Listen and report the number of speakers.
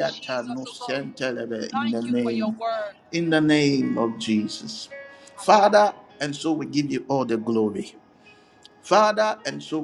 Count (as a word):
two